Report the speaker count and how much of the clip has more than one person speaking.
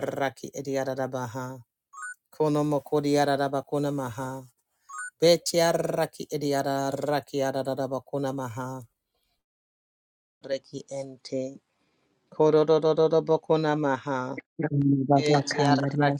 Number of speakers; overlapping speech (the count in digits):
2, about 6%